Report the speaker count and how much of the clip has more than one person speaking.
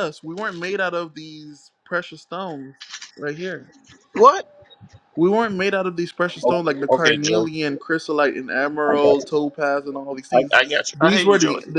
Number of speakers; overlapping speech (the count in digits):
2, about 21%